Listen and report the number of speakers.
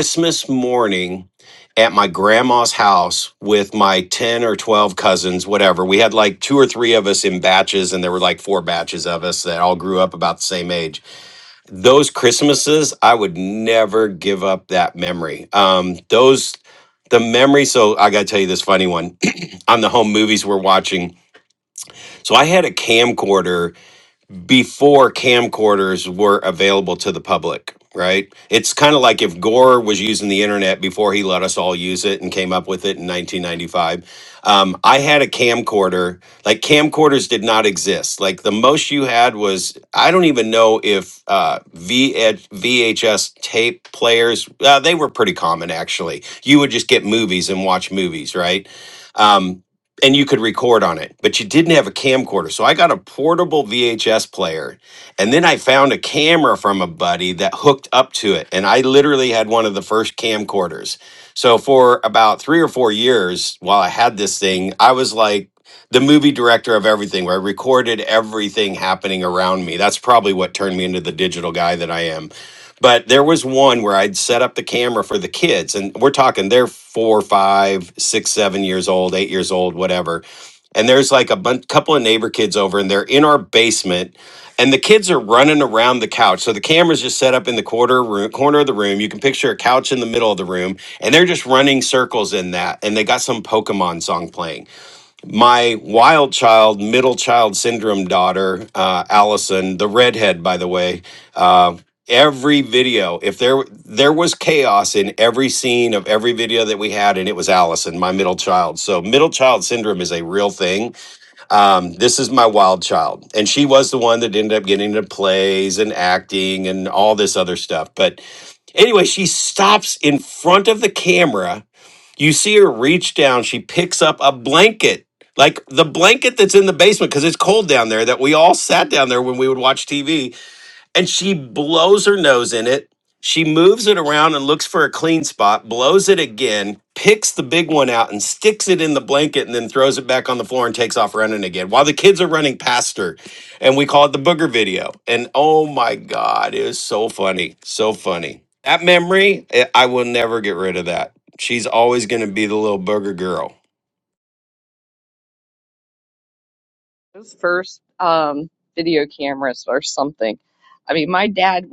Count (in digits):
2